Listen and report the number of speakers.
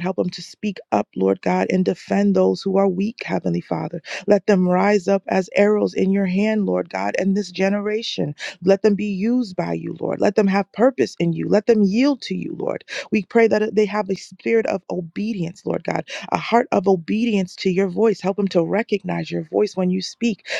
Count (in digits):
1